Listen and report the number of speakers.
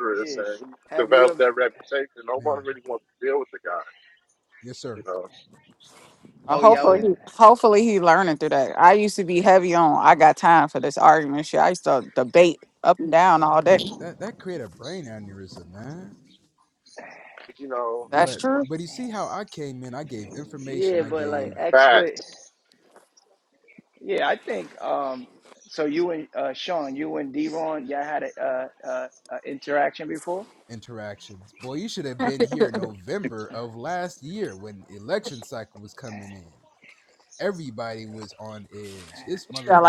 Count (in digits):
4